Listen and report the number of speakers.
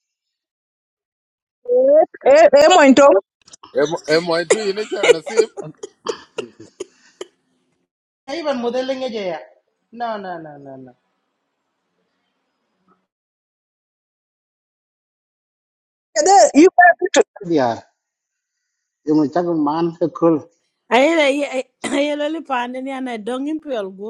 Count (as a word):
five